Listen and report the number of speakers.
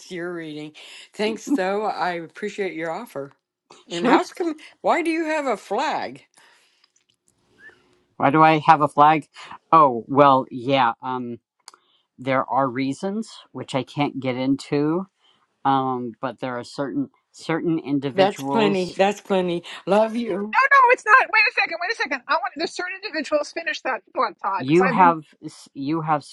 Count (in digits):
3